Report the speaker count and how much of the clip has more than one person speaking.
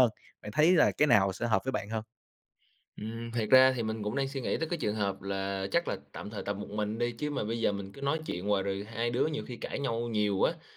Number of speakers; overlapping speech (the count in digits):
2, no overlap